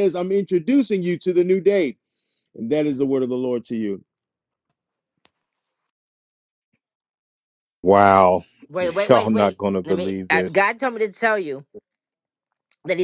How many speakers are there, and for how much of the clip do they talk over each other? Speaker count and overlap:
three, about 9%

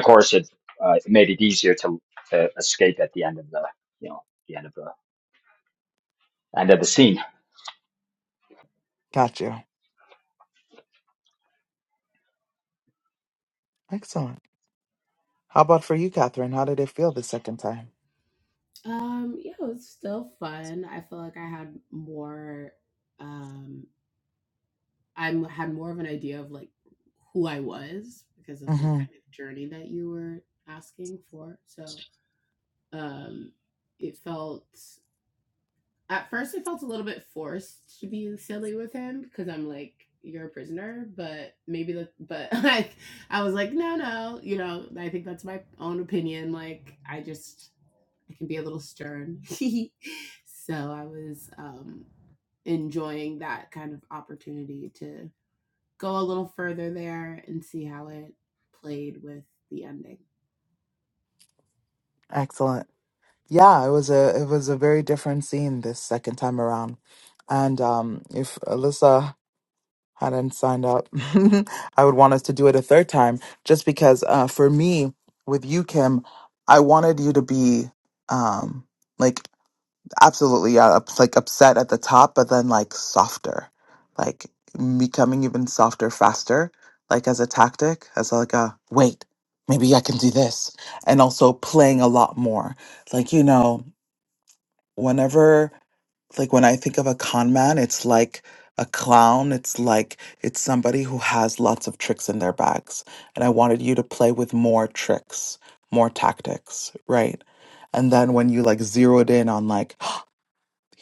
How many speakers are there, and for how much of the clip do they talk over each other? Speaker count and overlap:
three, under 1%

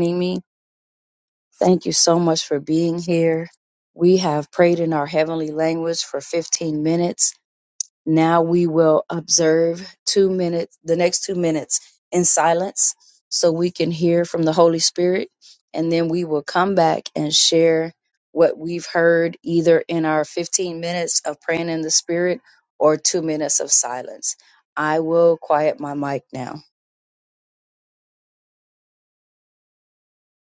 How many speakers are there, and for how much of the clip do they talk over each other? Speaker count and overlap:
one, no overlap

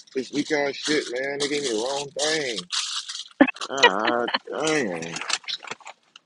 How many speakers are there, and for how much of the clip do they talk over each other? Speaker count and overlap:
one, no overlap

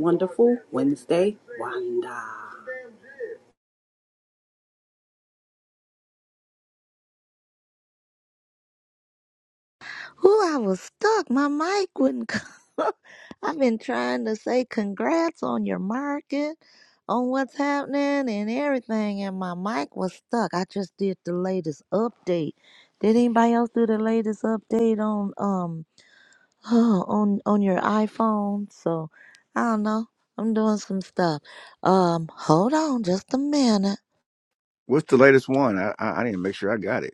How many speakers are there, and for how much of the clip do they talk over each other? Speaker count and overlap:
three, no overlap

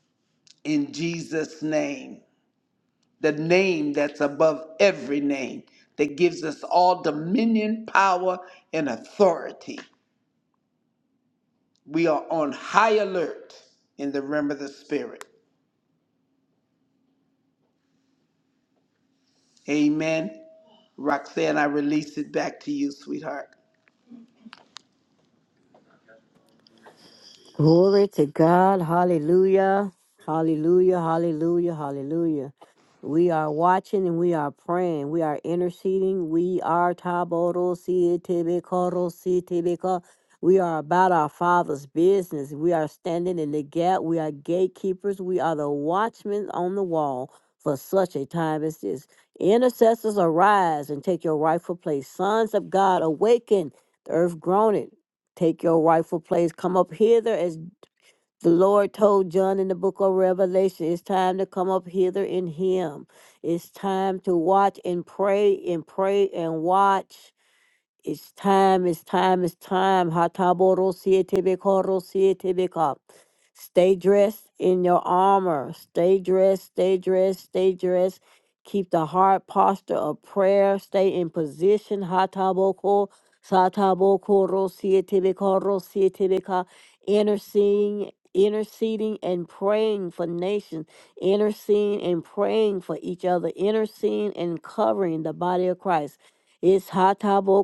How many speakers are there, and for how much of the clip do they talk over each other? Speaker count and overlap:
two, no overlap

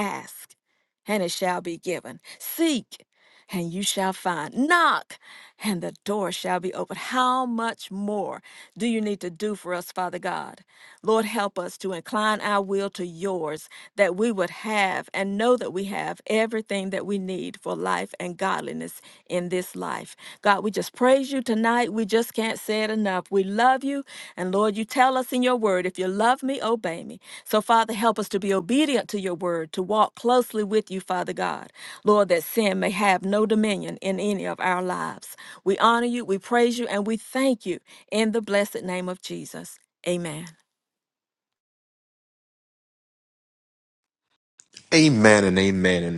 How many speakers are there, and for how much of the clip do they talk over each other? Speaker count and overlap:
two, no overlap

